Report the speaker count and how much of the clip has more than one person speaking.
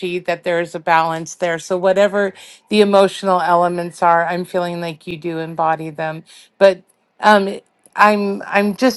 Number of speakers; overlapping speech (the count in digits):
1, no overlap